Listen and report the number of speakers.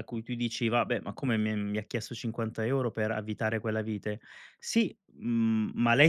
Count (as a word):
one